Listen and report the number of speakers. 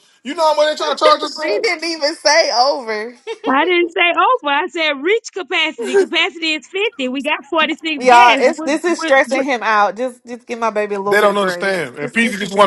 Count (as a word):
three